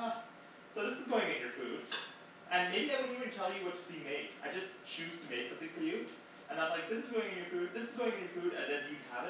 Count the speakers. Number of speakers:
one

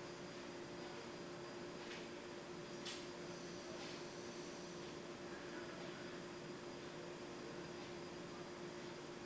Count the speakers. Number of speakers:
zero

